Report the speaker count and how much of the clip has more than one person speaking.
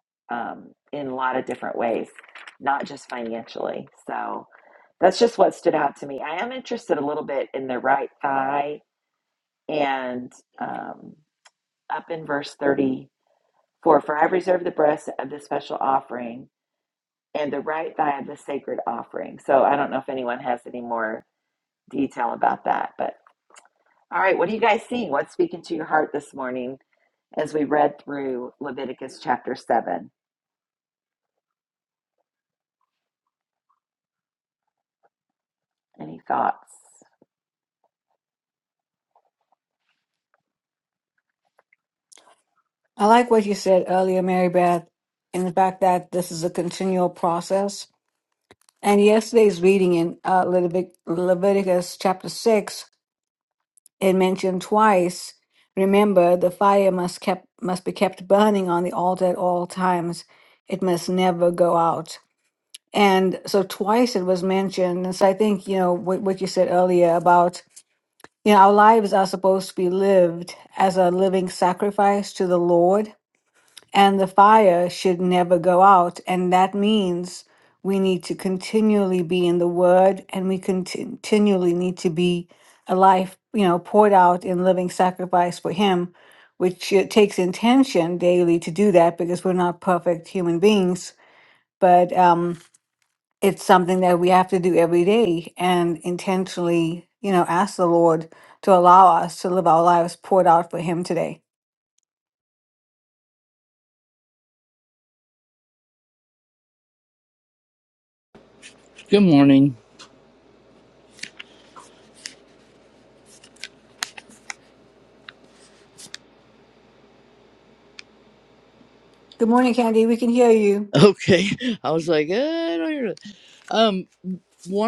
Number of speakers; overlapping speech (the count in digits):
3, no overlap